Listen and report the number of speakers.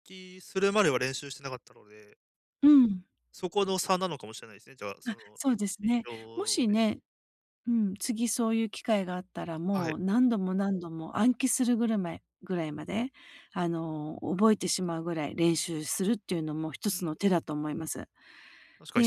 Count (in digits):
2